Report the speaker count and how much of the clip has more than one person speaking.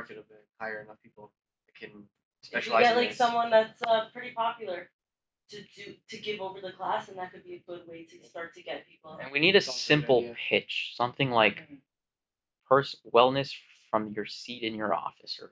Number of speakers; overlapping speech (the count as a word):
three, about 16%